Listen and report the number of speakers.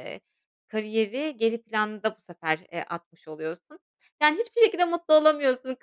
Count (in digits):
1